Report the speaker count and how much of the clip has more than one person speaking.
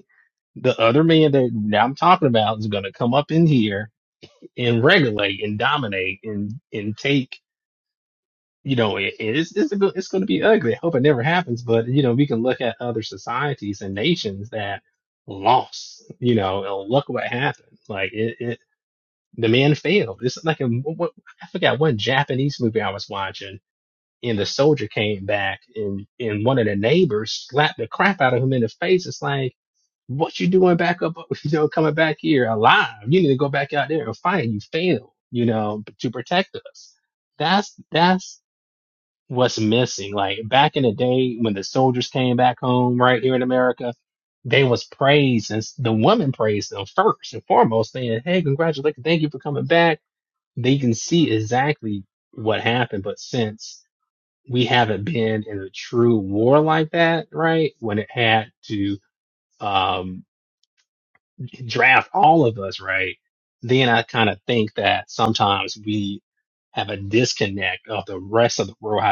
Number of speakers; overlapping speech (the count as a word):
one, no overlap